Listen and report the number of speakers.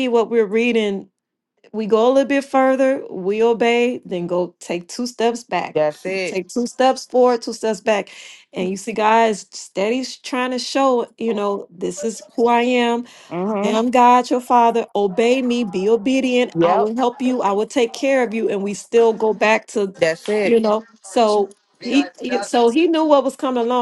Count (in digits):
2